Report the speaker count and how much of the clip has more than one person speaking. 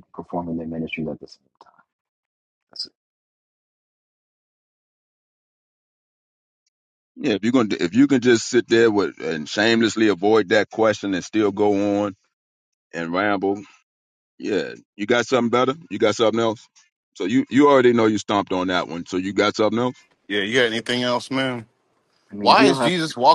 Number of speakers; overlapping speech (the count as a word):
three, about 2%